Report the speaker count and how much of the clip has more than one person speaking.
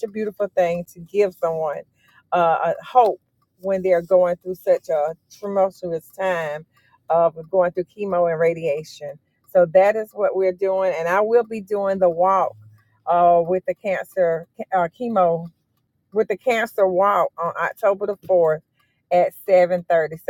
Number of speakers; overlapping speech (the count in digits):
1, no overlap